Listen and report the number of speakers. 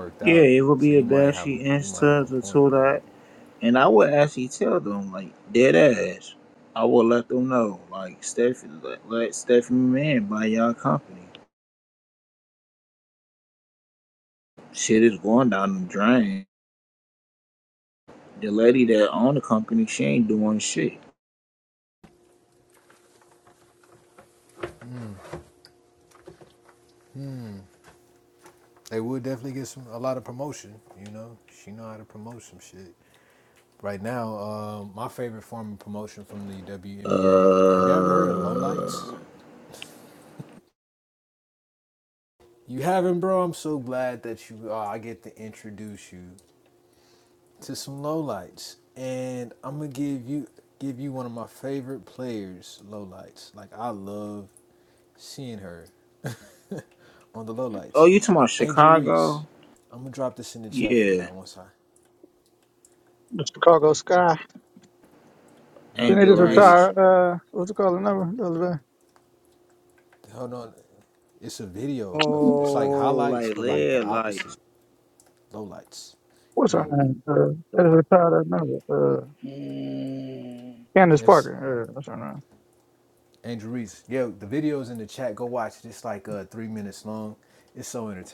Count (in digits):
4